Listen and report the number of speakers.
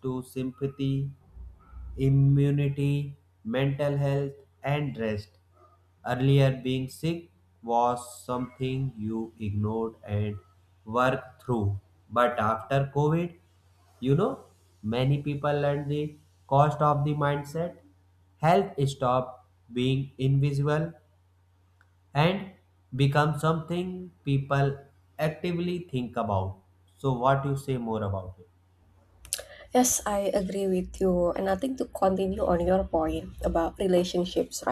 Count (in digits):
2